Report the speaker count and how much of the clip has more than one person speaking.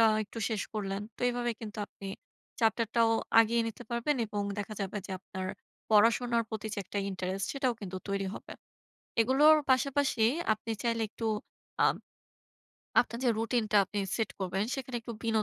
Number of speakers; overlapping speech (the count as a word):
one, no overlap